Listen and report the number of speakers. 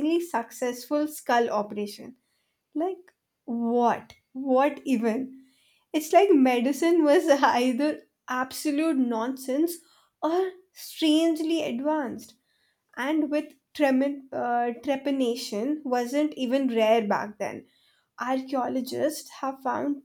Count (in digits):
1